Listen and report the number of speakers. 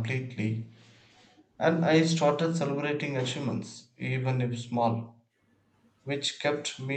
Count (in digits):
1